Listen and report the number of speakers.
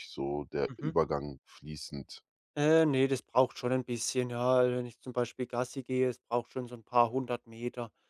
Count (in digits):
2